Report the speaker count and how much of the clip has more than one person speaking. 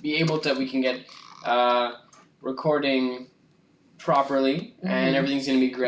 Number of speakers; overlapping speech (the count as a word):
one, no overlap